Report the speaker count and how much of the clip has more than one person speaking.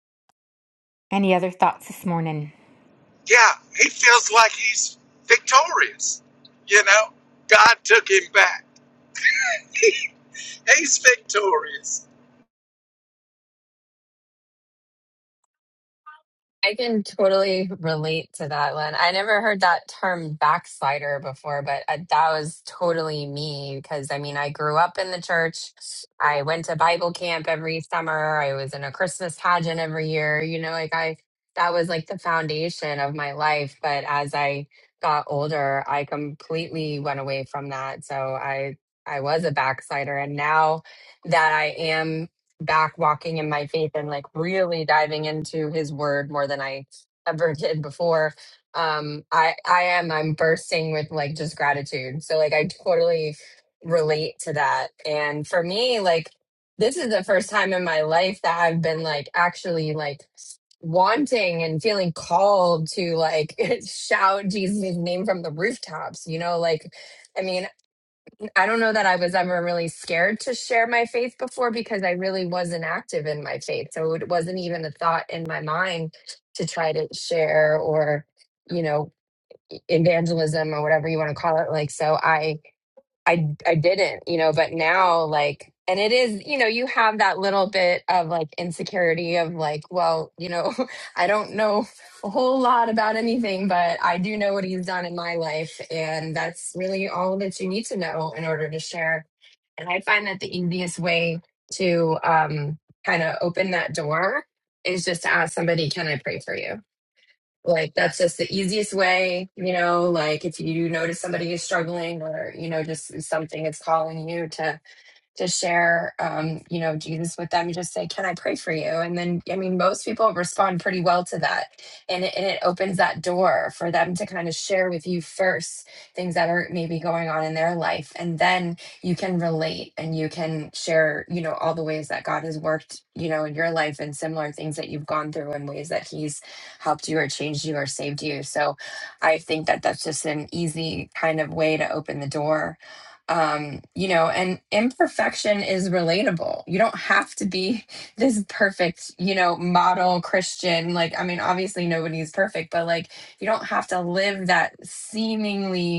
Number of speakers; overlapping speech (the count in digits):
3, no overlap